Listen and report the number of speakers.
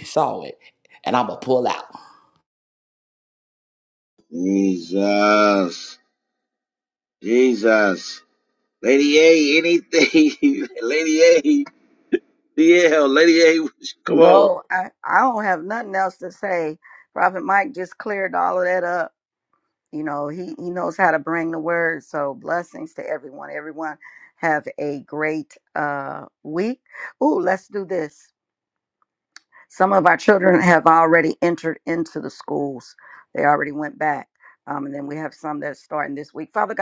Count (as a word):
three